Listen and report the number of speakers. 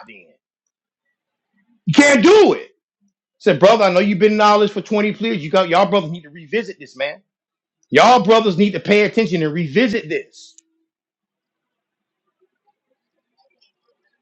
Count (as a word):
one